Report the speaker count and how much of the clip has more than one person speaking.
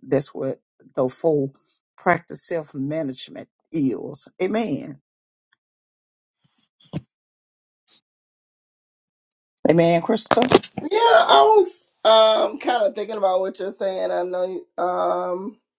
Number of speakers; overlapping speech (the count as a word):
two, no overlap